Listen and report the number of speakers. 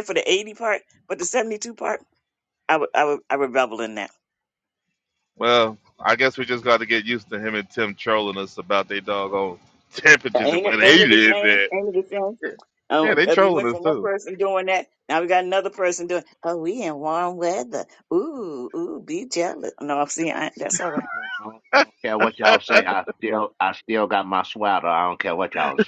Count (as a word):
three